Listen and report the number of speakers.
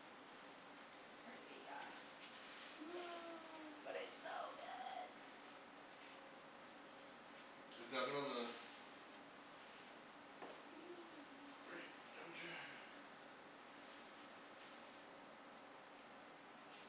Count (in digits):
2